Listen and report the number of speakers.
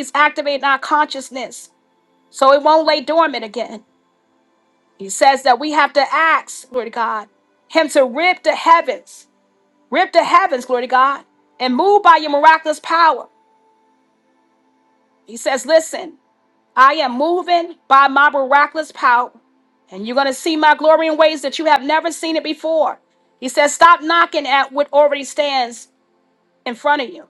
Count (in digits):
1